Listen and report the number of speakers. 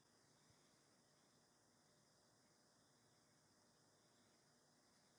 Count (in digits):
0